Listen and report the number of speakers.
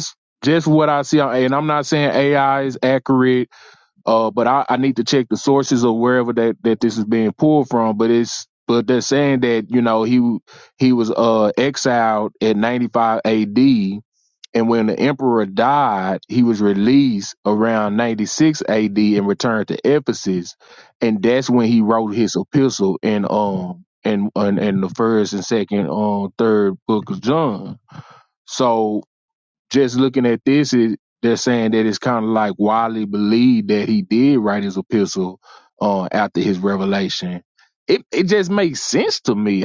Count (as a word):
one